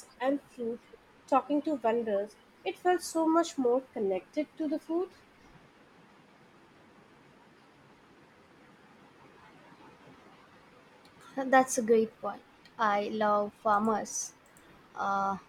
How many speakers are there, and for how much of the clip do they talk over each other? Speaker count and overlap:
two, no overlap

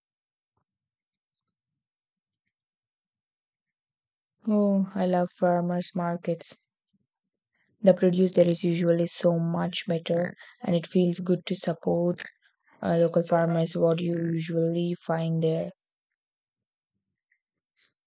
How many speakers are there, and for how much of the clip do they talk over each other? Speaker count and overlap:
one, no overlap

